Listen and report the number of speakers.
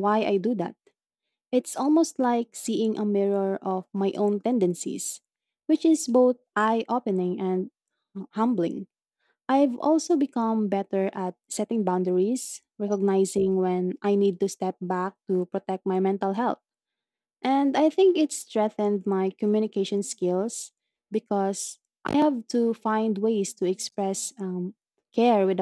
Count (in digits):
1